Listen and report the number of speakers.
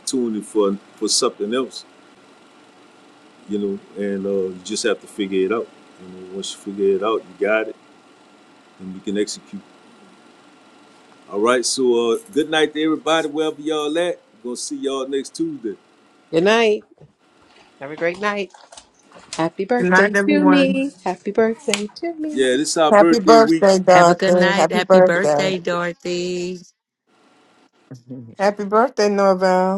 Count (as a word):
four